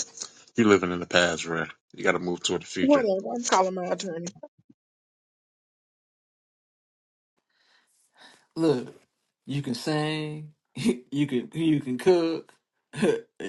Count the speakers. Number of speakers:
3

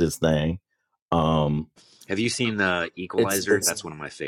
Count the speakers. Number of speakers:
2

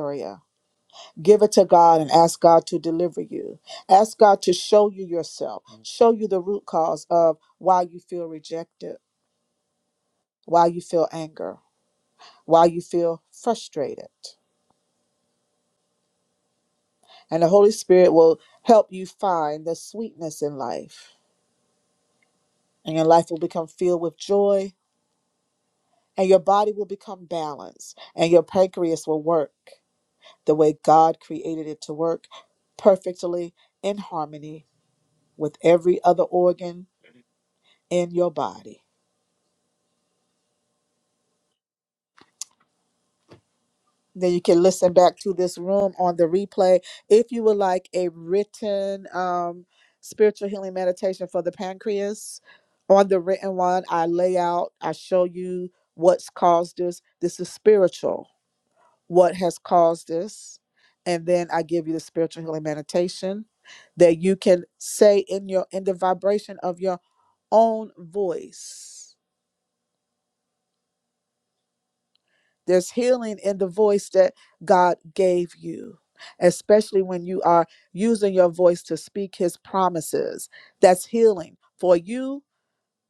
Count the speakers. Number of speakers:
1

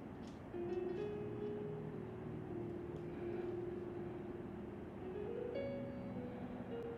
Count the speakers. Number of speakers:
0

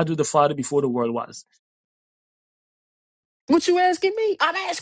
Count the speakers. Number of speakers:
2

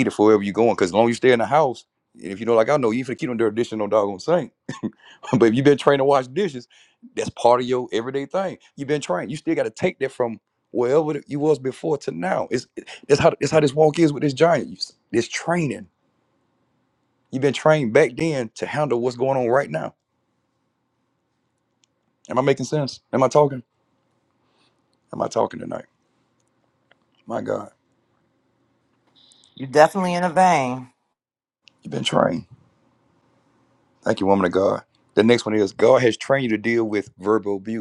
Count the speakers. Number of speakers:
2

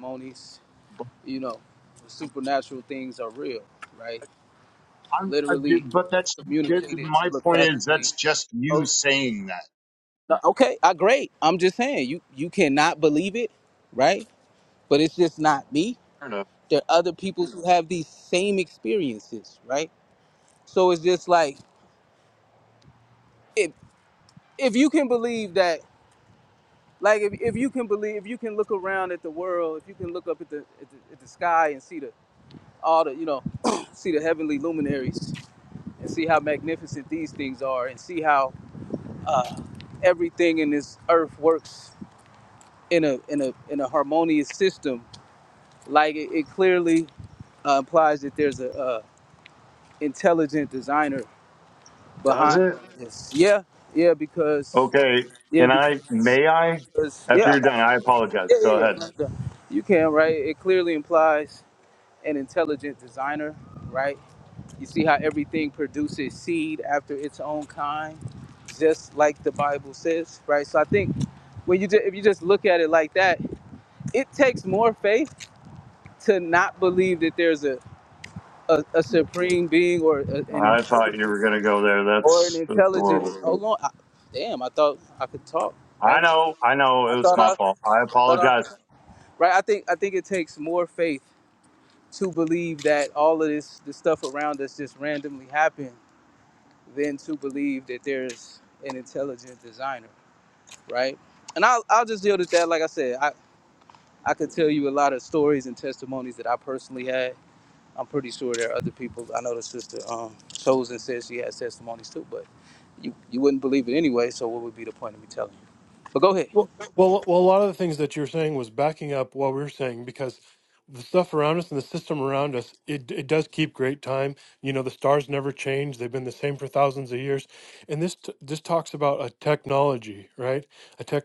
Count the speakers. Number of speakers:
3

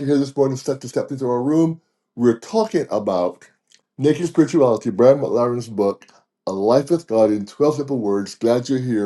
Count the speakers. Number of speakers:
1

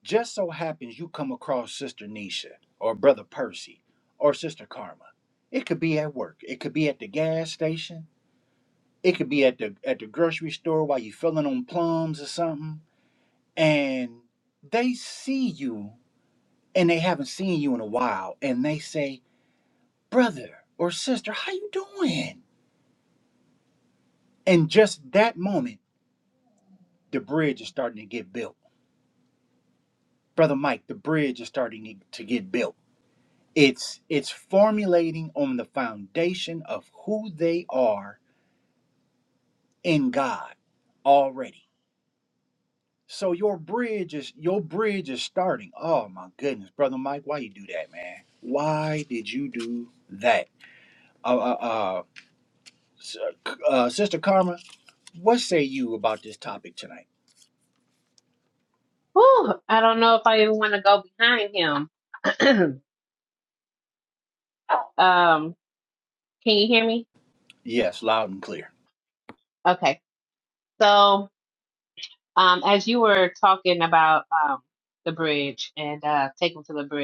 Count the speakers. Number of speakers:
2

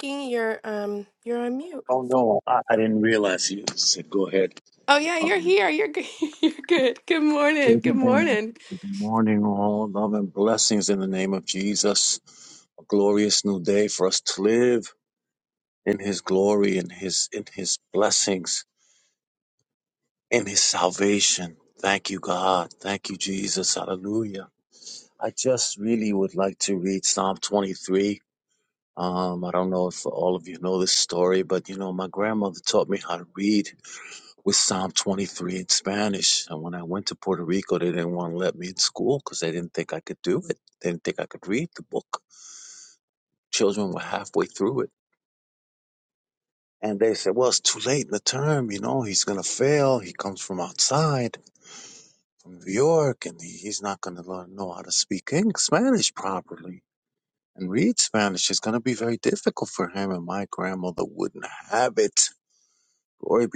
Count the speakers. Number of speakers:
2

